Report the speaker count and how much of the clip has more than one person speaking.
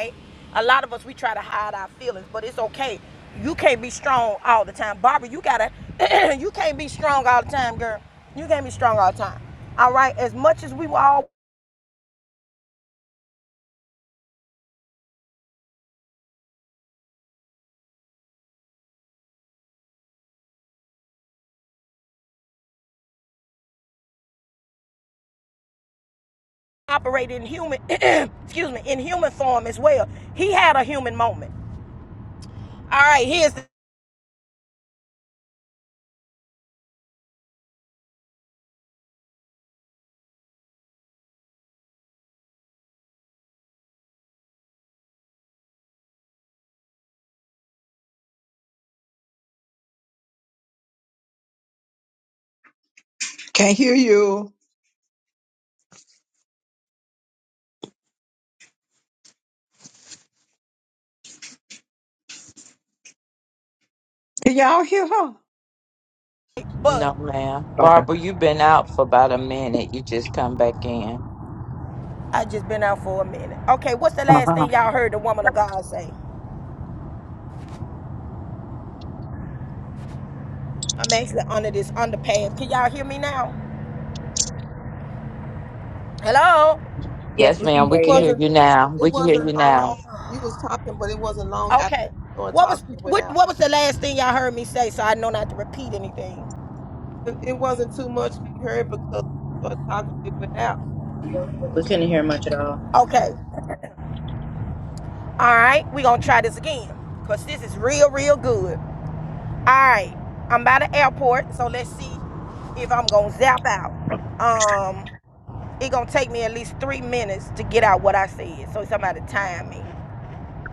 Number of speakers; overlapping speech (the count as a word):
five, about 3%